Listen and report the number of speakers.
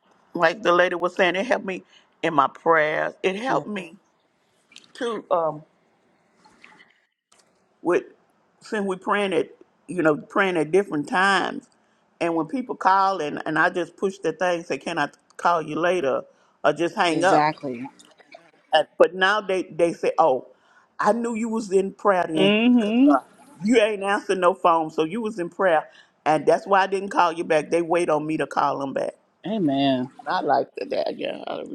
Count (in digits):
2